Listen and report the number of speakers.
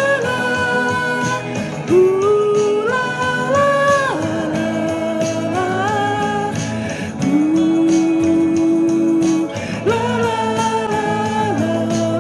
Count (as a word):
one